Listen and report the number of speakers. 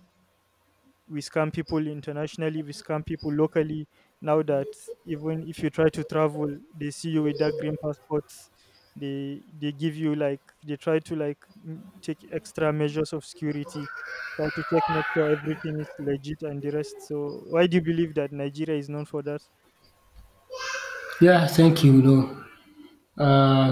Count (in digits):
2